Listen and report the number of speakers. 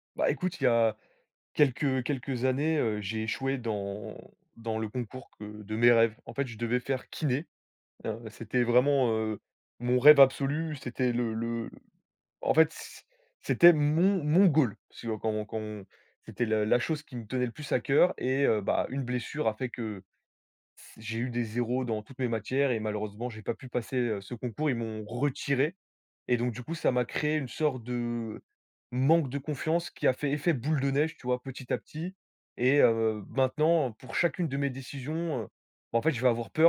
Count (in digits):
1